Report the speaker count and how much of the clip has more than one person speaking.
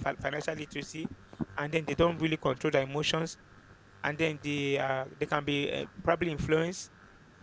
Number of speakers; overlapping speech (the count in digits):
1, no overlap